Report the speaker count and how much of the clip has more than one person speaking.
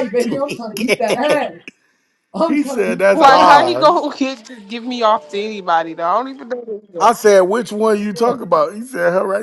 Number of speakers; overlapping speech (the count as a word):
three, about 32%